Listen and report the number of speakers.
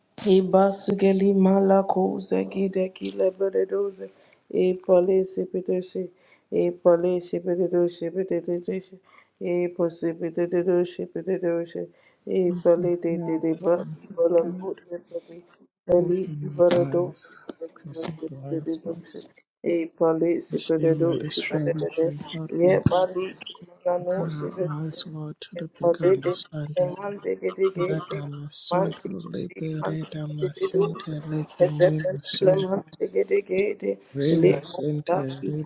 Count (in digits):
2